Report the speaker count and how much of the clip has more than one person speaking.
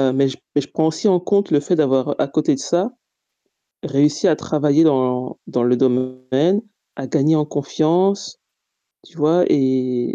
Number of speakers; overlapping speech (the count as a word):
one, no overlap